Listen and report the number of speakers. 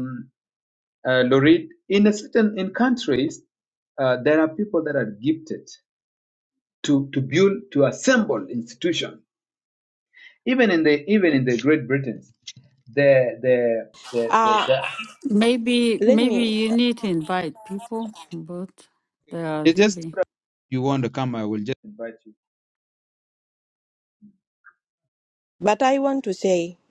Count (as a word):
three